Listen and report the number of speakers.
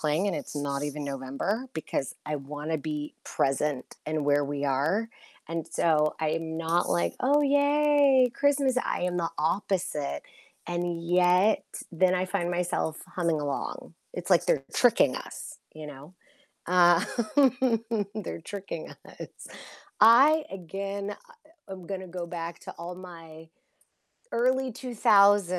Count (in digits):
1